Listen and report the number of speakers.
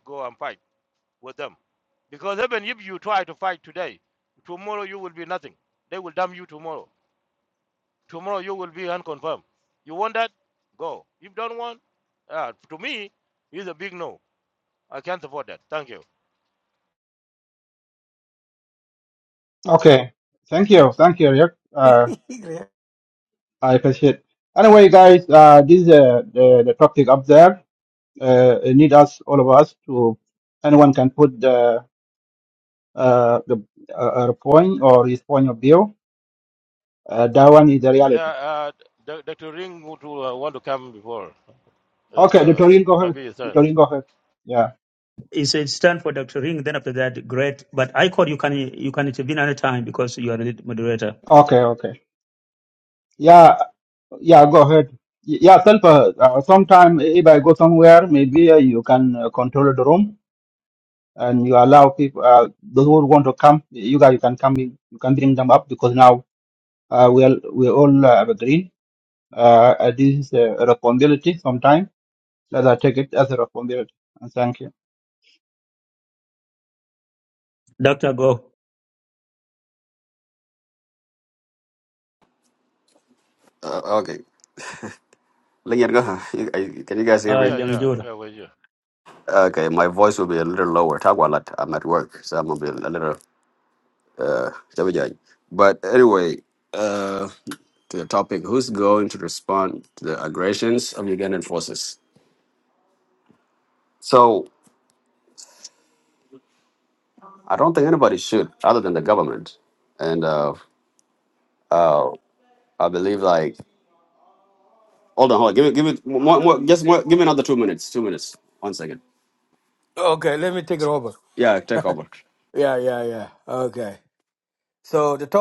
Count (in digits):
5